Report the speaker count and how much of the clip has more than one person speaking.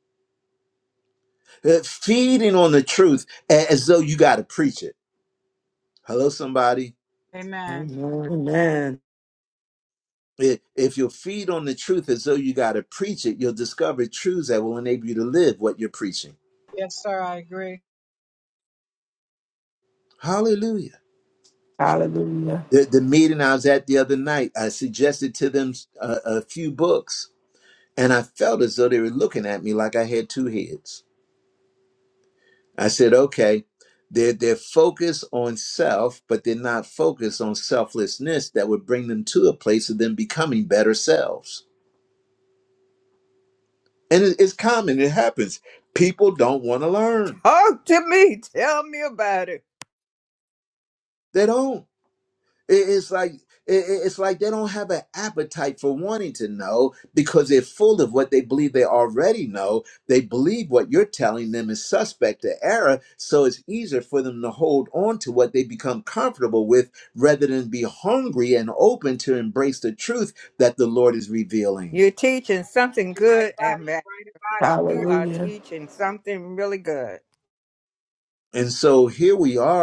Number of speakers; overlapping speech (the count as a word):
five, about 2%